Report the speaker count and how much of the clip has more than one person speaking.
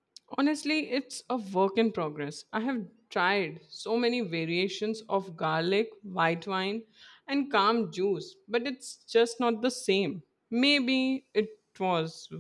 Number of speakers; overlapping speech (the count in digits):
1, no overlap